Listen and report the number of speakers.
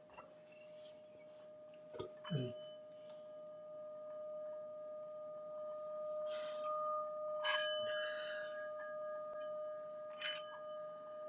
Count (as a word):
zero